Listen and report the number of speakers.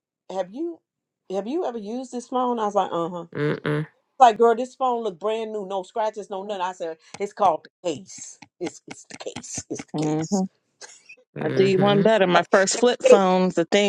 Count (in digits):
3